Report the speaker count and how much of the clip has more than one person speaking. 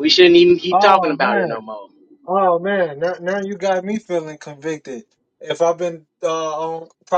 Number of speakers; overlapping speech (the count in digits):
2, about 12%